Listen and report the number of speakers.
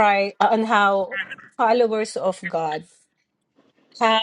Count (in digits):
1